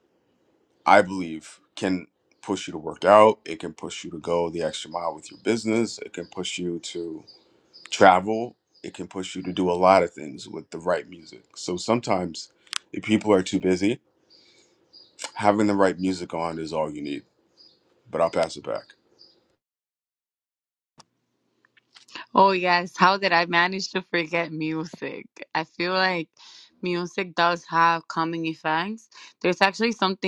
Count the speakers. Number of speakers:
2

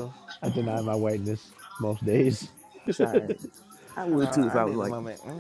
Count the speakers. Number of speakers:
3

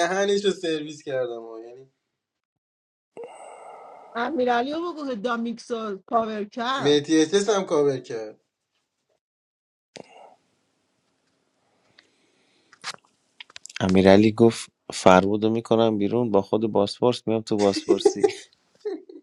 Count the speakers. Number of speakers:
3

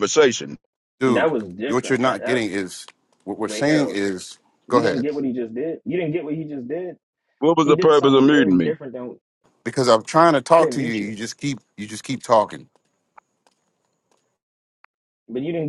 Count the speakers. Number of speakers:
3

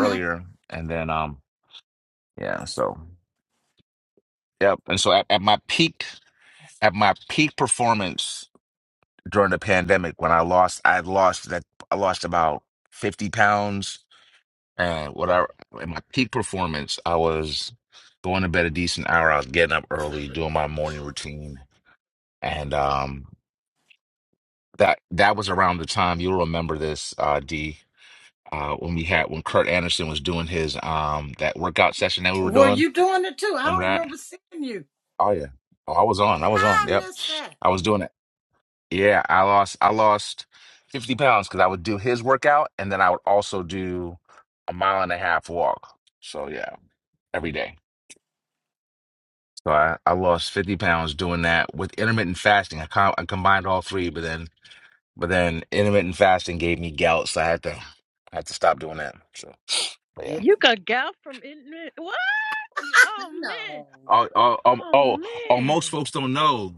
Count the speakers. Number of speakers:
3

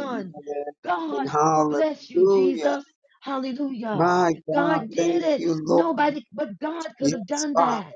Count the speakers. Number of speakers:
2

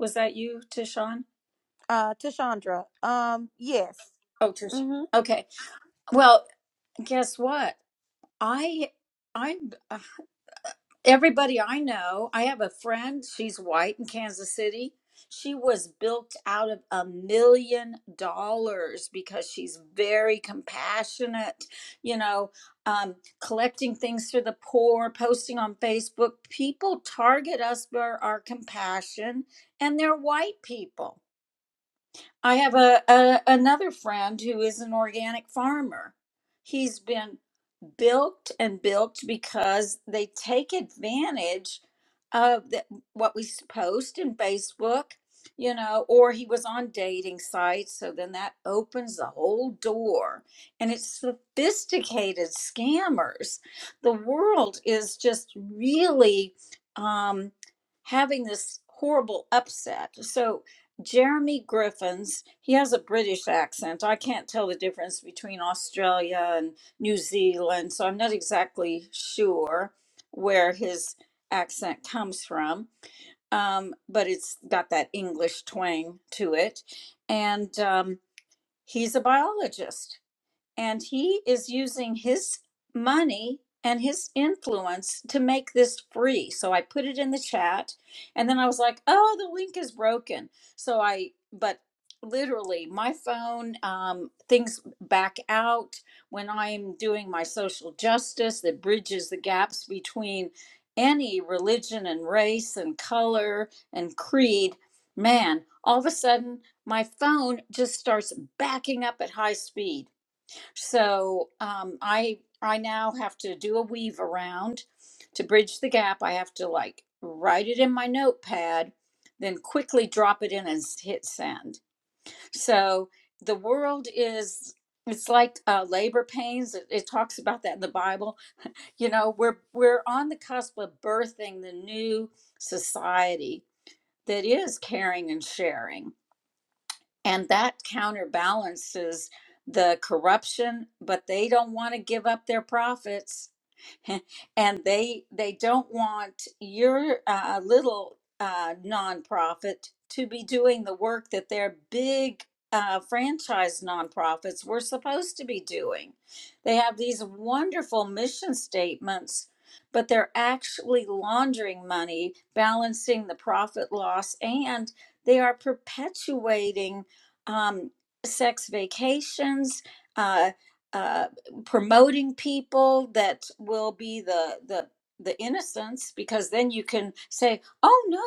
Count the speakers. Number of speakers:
2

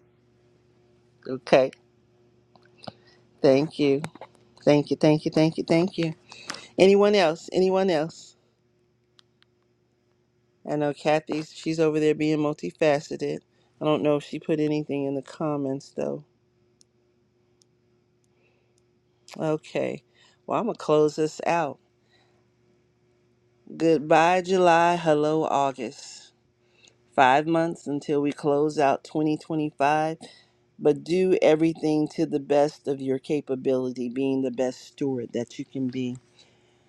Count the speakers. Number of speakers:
1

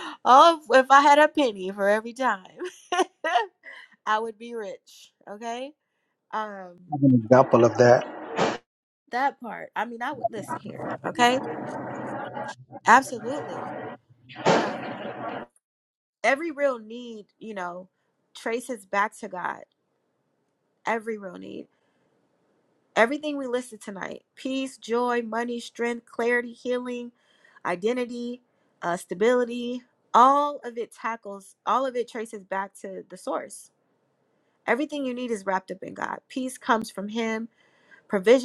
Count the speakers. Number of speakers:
2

